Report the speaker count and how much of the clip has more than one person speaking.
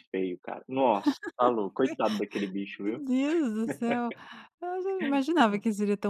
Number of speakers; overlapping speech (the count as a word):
two, about 2%